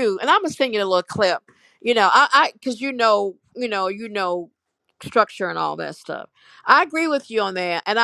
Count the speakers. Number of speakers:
one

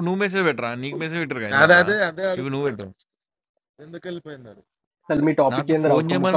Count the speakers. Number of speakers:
three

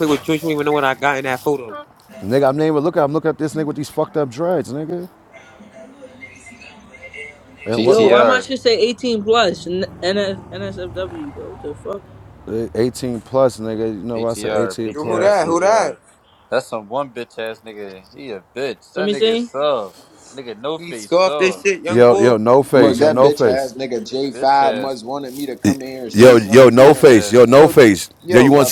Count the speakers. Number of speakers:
five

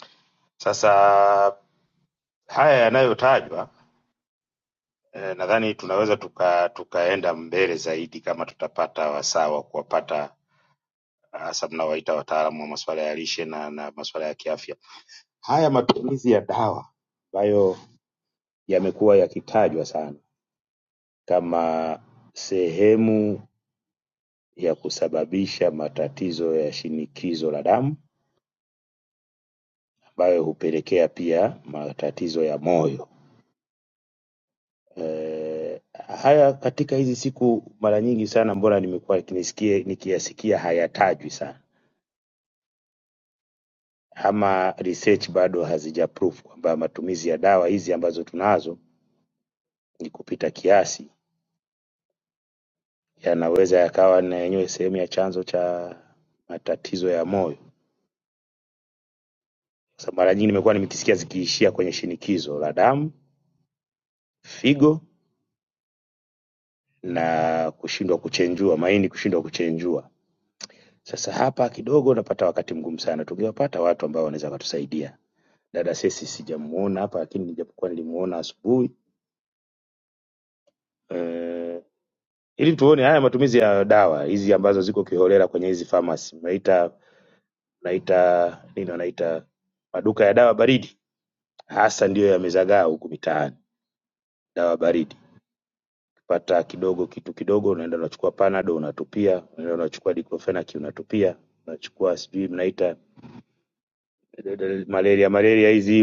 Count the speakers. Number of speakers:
one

